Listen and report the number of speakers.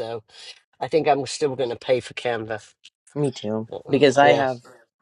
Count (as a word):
two